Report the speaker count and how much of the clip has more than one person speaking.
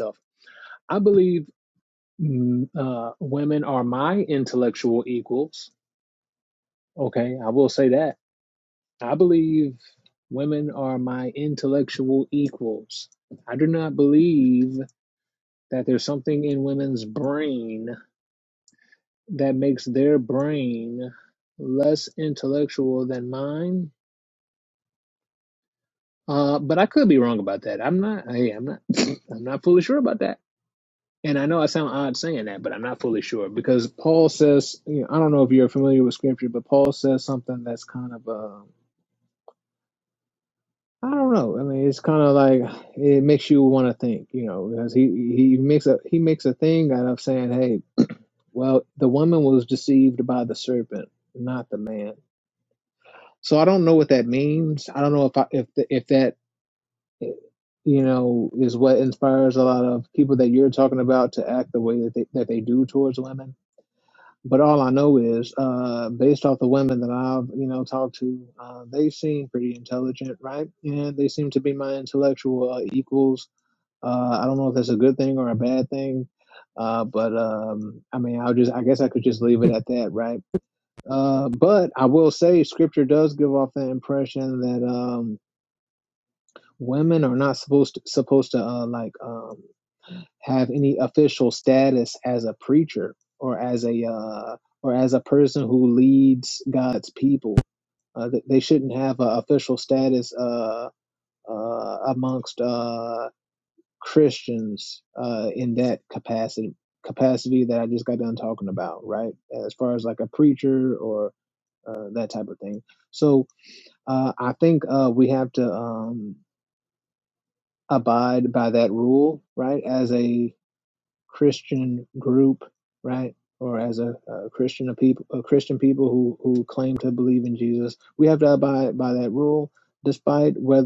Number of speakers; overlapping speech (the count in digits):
1, no overlap